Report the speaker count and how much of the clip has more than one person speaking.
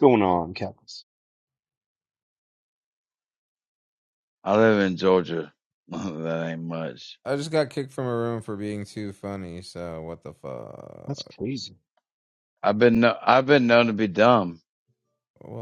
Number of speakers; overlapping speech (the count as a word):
three, about 2%